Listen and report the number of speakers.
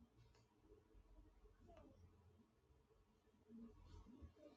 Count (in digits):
0